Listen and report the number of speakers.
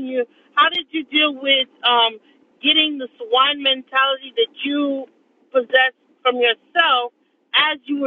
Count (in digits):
1